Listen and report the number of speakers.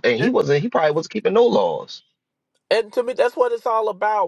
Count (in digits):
2